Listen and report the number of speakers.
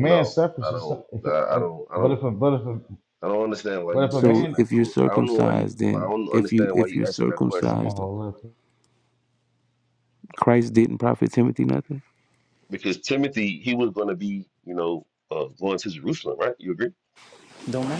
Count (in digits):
3